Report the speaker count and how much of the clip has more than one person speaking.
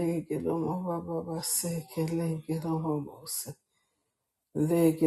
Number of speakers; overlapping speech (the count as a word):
one, no overlap